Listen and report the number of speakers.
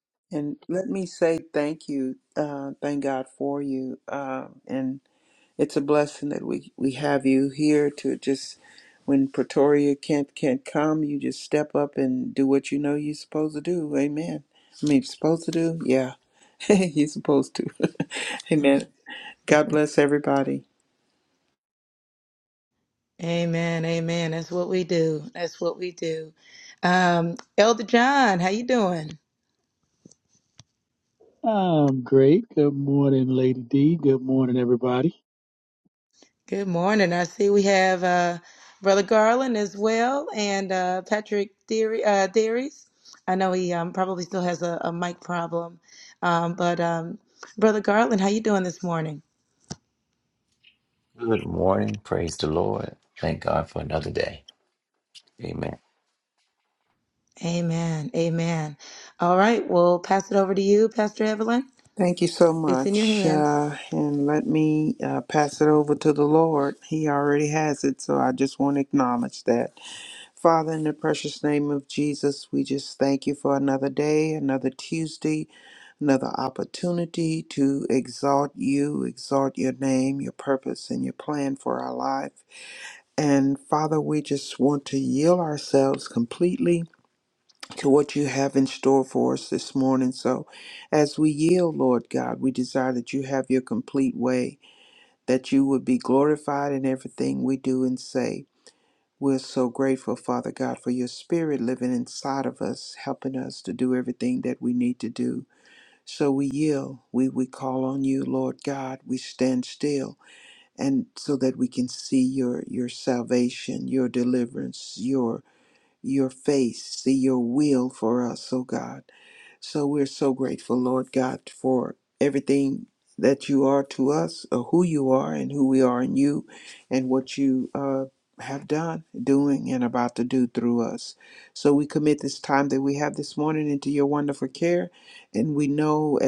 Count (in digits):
4